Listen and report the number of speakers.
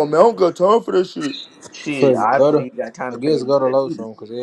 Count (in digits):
3